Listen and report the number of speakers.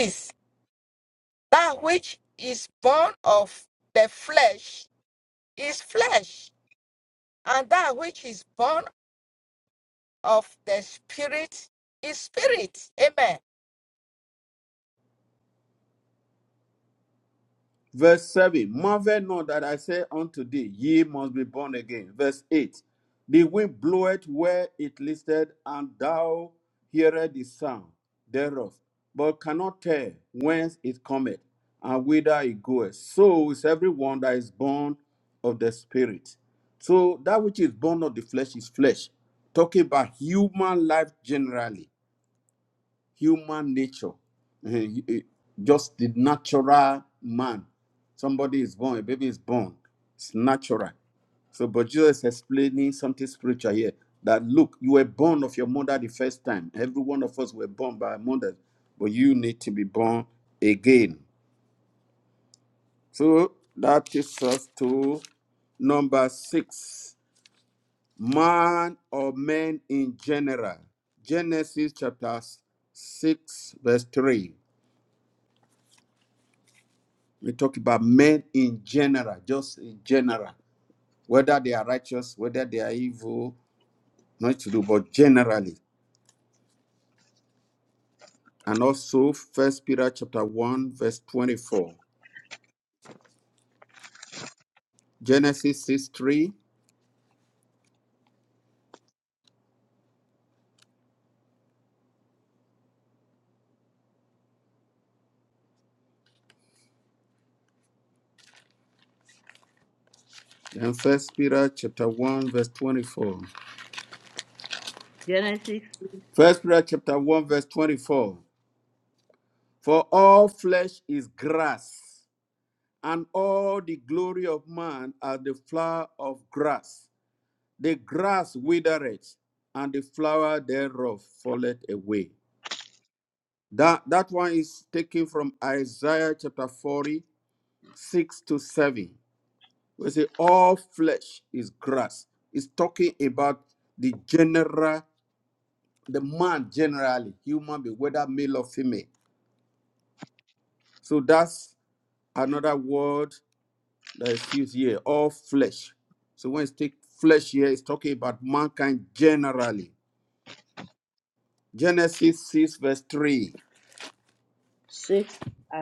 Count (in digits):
3